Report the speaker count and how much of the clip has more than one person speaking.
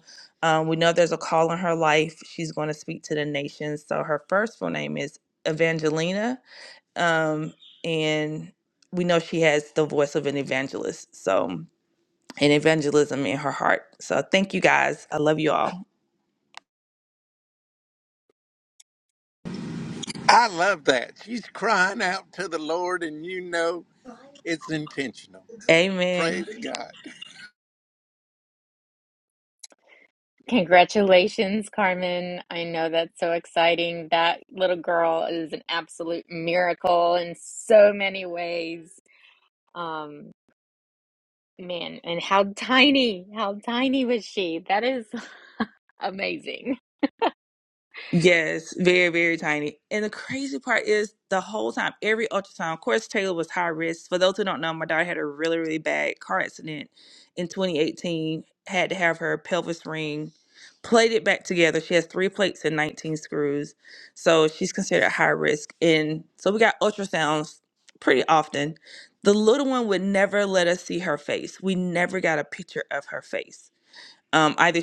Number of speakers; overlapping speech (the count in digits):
3, under 1%